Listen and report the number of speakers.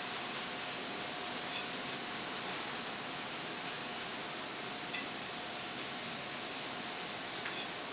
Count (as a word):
zero